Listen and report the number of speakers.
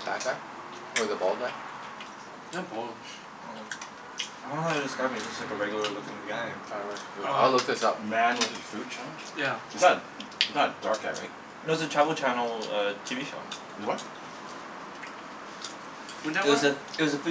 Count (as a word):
four